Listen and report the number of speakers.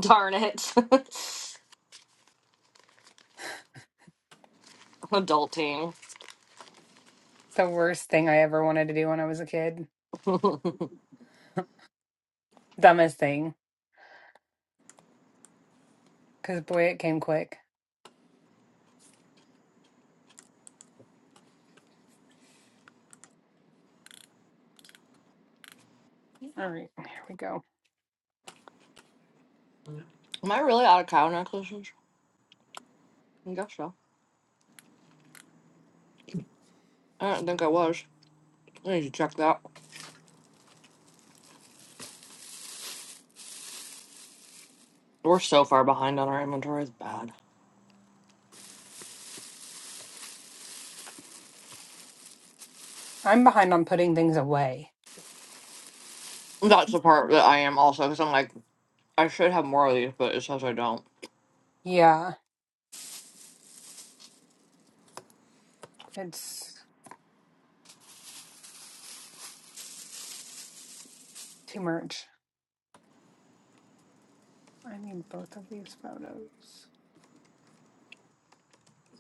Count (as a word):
two